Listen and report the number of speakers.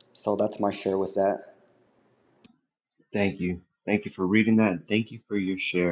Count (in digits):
2